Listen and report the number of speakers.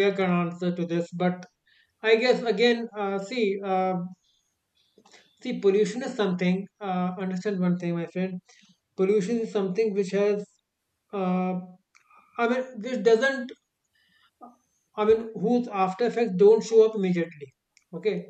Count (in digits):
1